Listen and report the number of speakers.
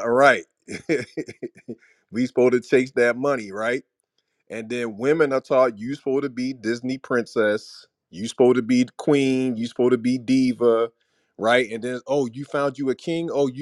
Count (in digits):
1